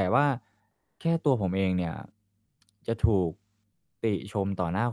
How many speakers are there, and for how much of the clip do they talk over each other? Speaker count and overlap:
1, no overlap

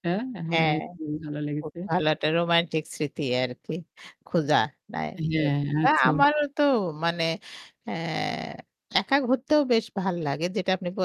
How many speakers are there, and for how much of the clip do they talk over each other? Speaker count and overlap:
2, about 8%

